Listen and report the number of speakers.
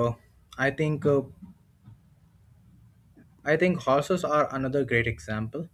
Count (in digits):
1